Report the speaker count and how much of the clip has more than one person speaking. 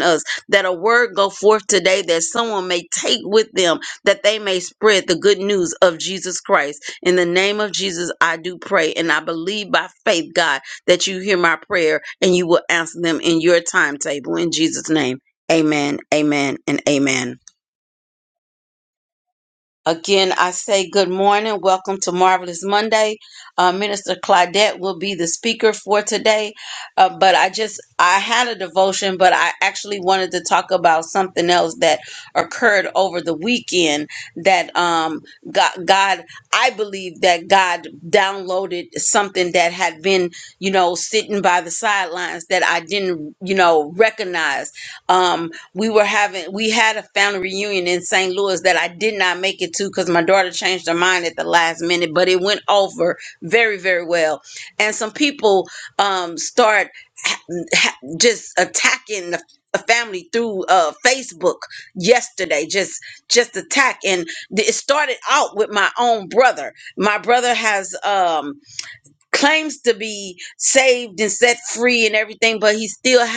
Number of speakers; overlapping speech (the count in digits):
1, no overlap